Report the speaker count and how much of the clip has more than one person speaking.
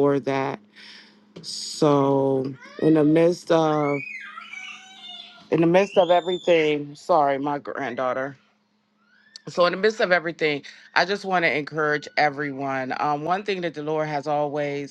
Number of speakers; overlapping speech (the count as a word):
one, no overlap